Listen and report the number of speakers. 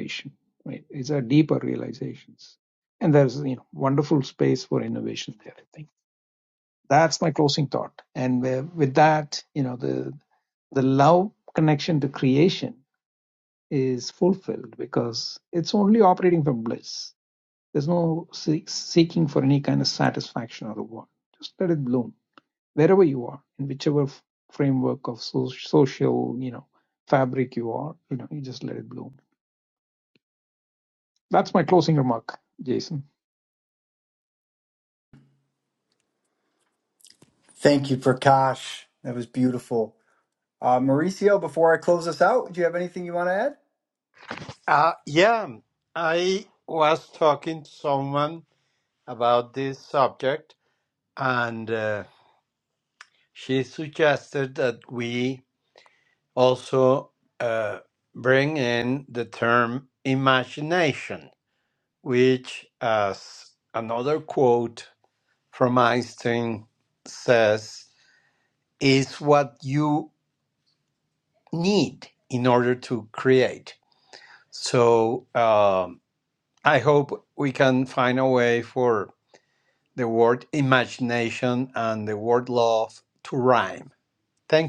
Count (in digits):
3